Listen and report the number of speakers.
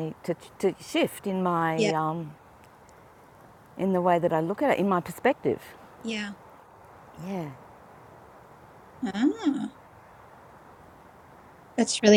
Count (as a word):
two